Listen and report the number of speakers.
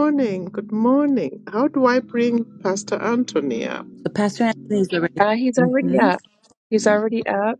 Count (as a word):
three